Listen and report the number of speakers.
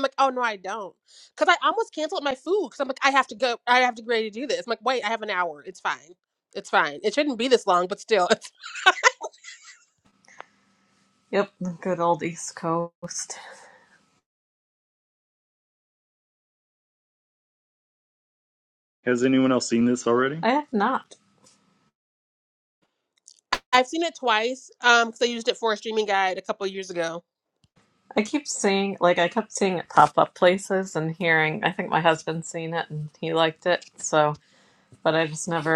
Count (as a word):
three